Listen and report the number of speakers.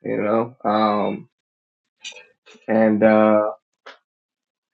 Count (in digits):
1